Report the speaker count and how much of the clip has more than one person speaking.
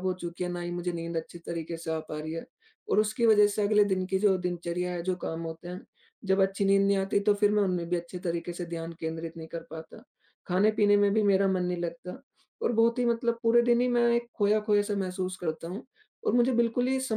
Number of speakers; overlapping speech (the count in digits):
1, no overlap